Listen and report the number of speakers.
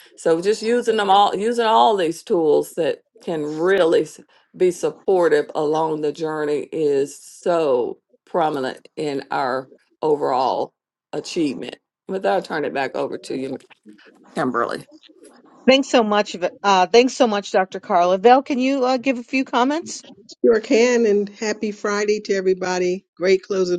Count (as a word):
three